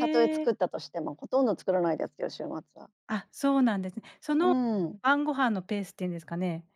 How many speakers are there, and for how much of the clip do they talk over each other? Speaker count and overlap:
2, about 4%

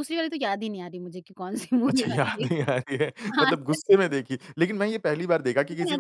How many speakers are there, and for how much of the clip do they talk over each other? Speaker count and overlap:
2, about 29%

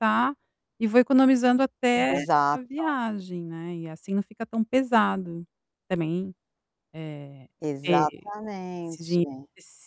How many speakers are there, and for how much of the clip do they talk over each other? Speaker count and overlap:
2, about 9%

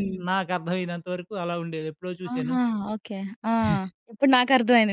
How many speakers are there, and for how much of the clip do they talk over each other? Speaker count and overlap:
2, about 11%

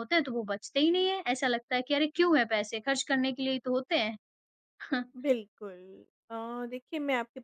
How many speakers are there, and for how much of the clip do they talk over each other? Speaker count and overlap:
2, no overlap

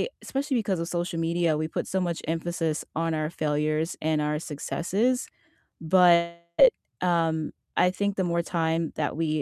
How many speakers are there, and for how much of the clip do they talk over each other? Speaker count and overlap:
1, no overlap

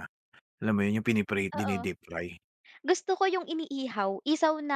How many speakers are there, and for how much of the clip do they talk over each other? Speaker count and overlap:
2, about 6%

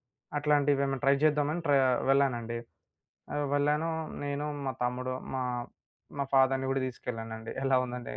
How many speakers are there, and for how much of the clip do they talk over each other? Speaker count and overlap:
1, no overlap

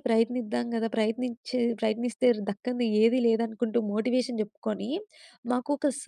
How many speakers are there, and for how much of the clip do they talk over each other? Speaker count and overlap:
1, no overlap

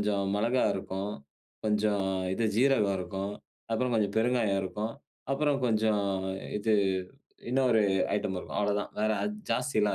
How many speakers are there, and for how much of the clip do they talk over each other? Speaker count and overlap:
1, no overlap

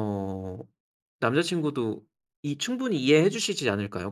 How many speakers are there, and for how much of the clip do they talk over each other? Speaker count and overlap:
1, no overlap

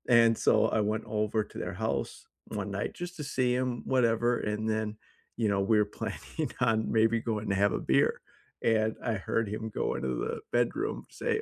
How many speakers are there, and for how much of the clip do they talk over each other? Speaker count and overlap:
1, no overlap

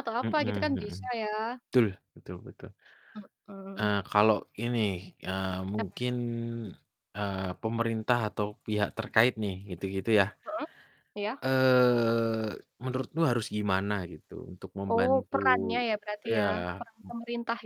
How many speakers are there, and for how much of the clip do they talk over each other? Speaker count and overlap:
2, about 8%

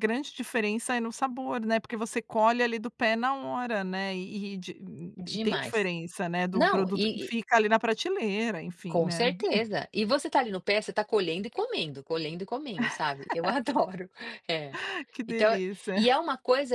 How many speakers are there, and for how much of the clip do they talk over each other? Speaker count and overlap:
2, about 16%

